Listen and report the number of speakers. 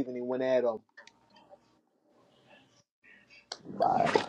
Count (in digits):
1